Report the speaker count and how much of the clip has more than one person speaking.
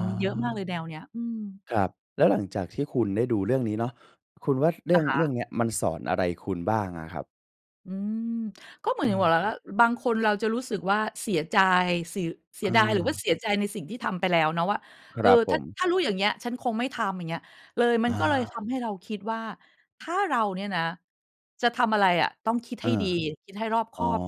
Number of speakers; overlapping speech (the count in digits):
2, about 9%